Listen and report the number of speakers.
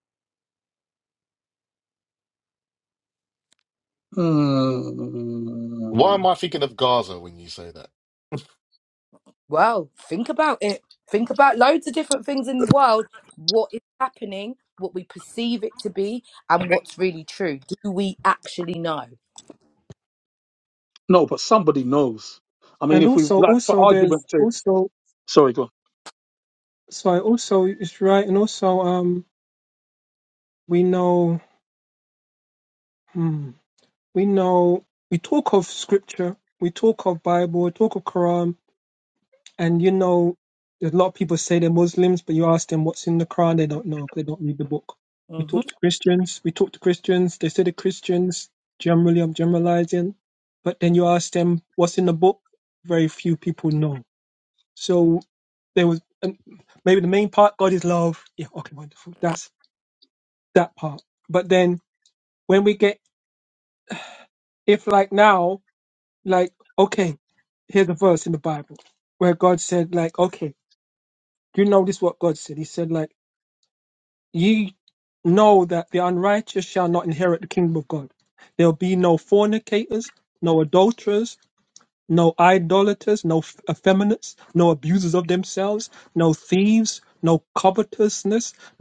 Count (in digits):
4